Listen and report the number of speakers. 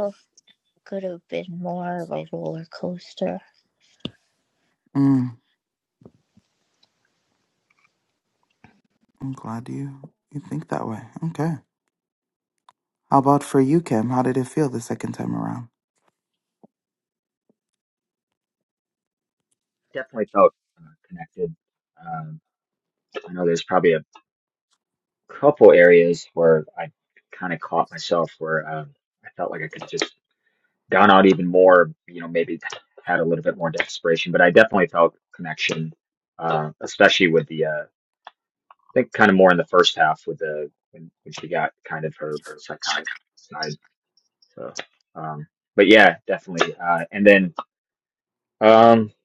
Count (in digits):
3